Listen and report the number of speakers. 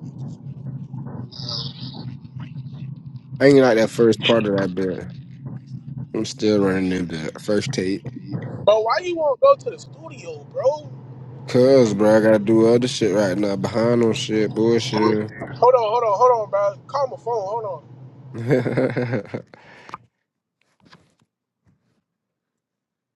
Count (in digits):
2